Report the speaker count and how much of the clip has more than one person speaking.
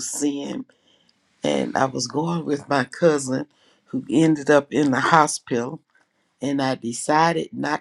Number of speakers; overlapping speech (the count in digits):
1, no overlap